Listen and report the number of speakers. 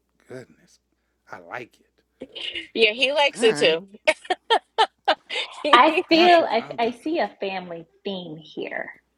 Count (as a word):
three